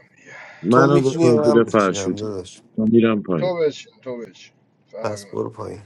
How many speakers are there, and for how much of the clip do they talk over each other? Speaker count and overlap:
three, about 35%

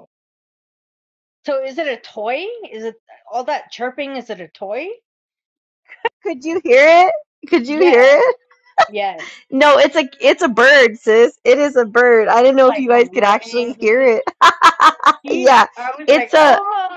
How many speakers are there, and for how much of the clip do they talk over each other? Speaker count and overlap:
two, about 16%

